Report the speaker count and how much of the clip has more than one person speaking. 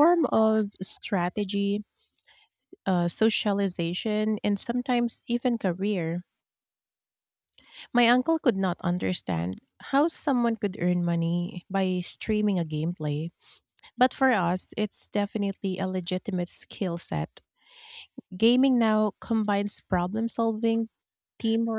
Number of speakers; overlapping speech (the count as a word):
one, no overlap